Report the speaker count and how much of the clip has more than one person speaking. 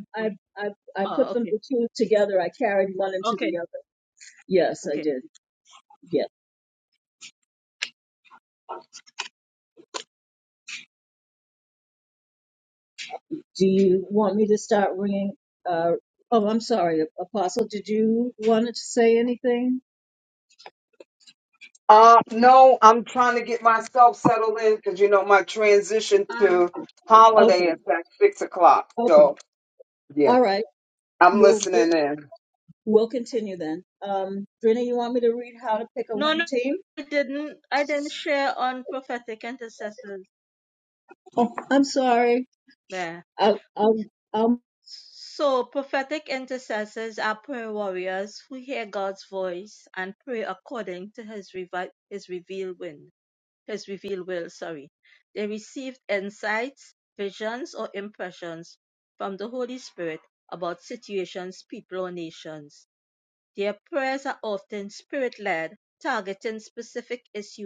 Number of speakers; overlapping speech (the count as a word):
three, about 5%